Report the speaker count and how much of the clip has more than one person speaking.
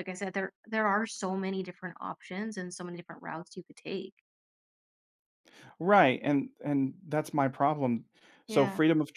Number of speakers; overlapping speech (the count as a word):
two, about 3%